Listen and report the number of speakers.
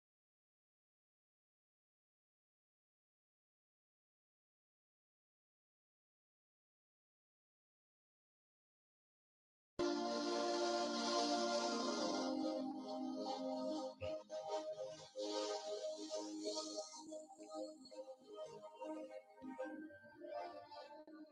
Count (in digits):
0